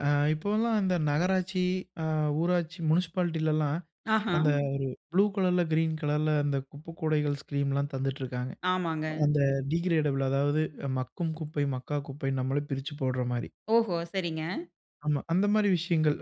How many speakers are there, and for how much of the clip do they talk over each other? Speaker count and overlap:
2, about 1%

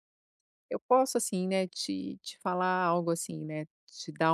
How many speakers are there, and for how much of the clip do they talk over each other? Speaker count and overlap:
1, no overlap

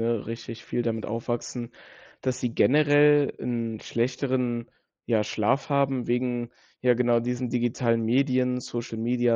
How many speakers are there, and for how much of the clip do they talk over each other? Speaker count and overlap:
1, no overlap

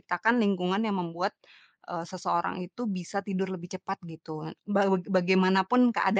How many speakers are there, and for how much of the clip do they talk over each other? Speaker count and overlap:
1, no overlap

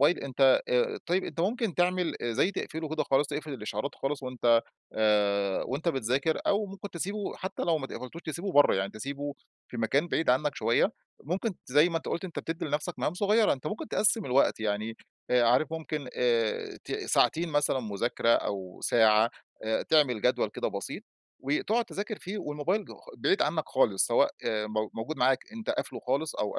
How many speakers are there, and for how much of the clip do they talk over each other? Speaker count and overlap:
1, no overlap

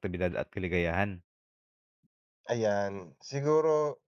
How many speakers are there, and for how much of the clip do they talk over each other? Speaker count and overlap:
2, no overlap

